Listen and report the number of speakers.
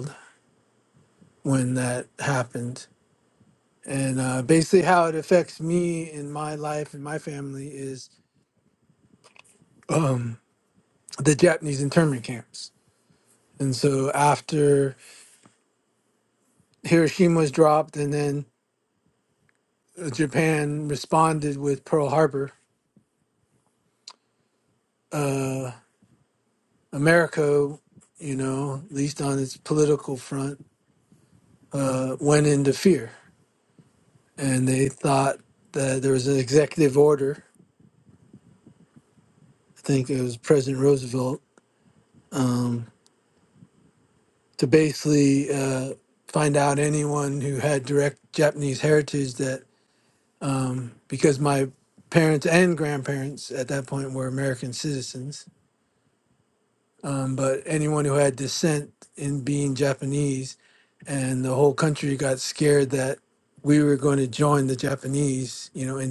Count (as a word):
one